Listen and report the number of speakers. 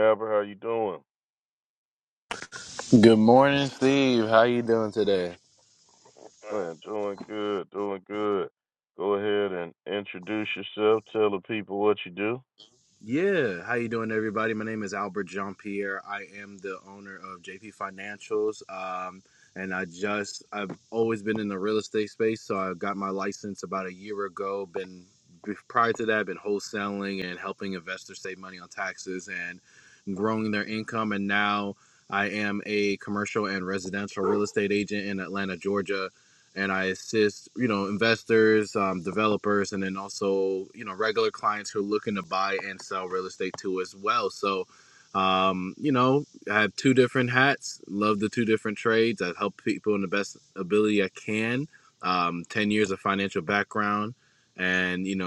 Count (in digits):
2